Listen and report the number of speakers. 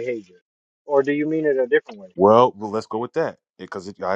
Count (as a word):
two